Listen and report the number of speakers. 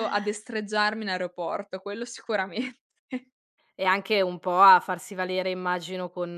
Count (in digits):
2